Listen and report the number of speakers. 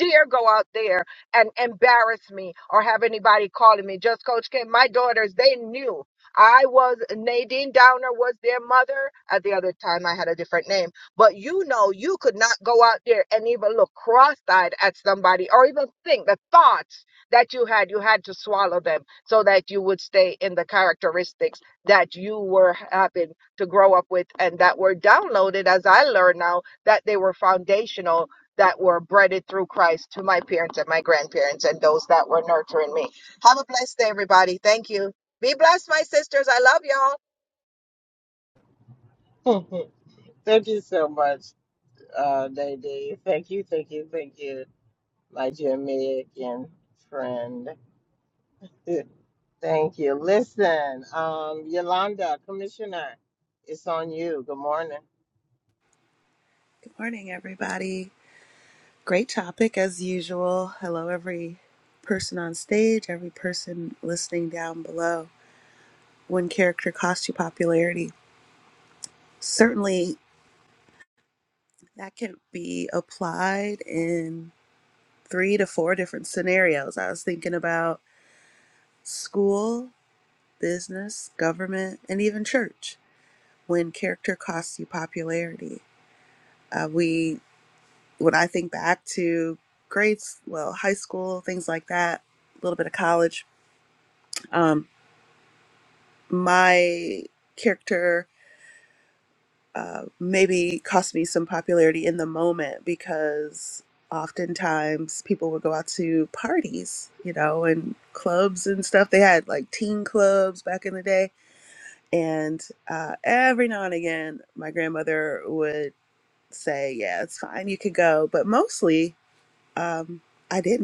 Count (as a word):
three